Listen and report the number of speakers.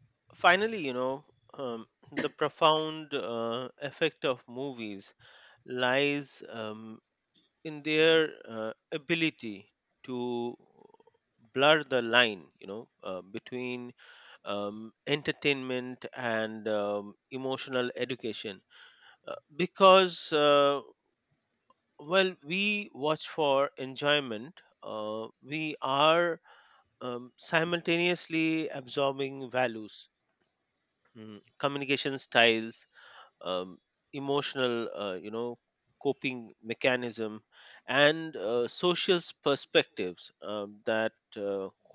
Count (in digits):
1